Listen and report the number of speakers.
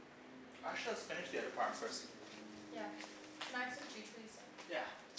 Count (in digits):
2